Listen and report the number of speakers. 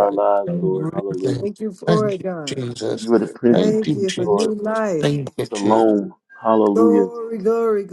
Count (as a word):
three